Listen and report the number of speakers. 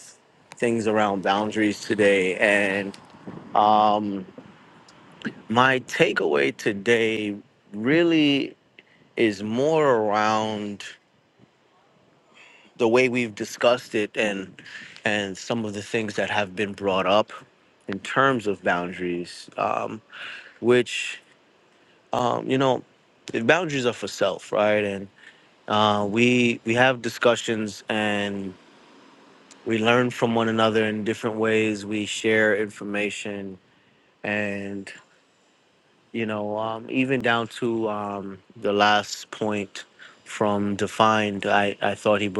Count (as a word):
one